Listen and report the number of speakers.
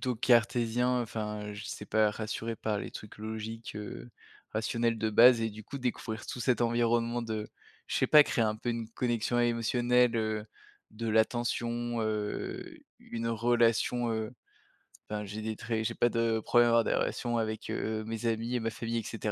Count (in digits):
1